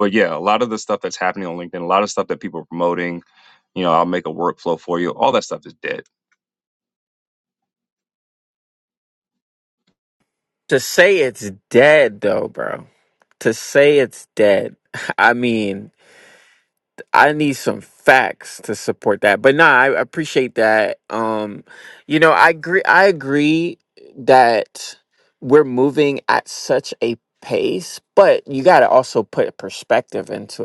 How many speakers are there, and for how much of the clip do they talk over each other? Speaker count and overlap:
2, no overlap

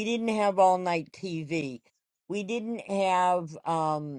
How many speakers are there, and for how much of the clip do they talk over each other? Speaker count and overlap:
1, no overlap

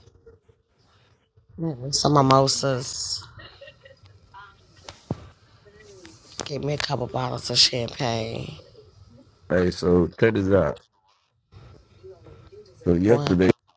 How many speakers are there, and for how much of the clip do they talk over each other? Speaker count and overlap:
2, about 2%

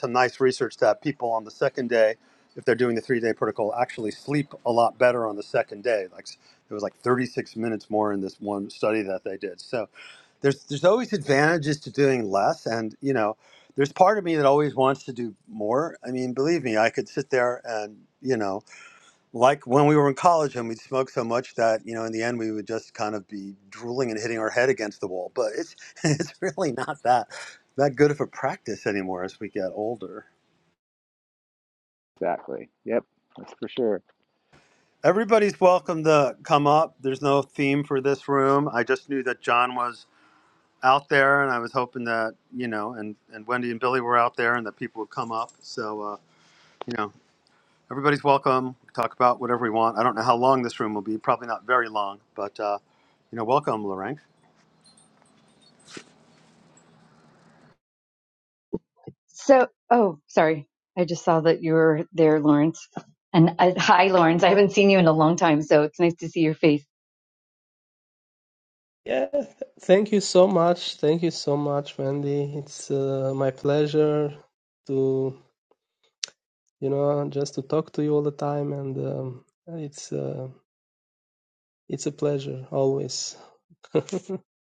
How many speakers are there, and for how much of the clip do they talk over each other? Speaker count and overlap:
4, no overlap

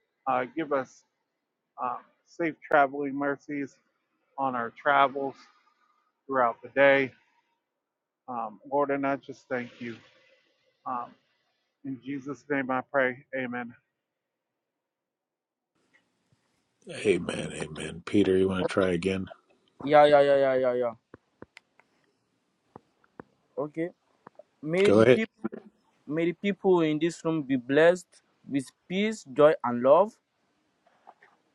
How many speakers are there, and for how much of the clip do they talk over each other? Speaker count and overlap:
3, about 1%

